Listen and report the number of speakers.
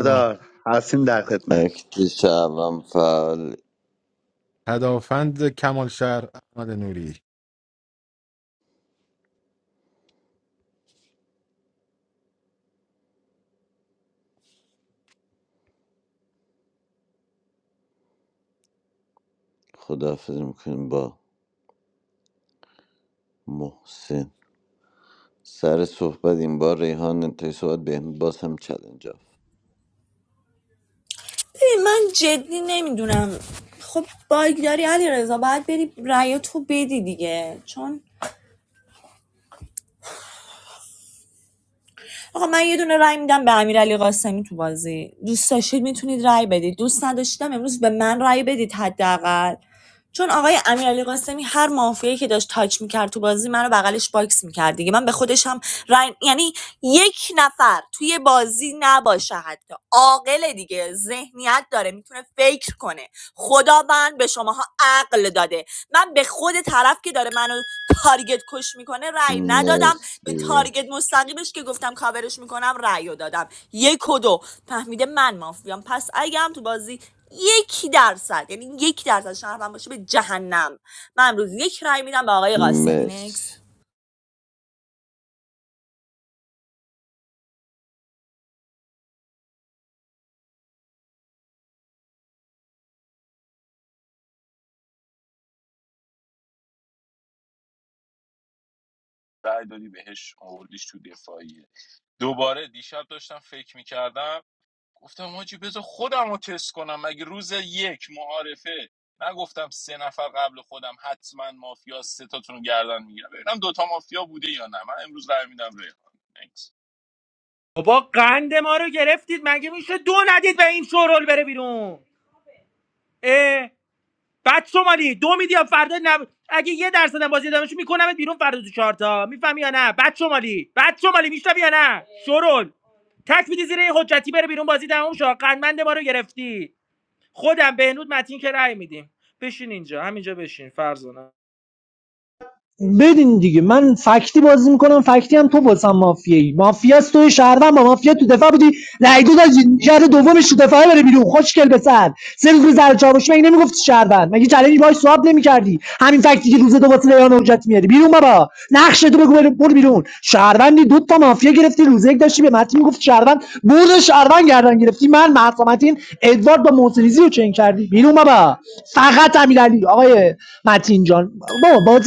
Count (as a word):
seven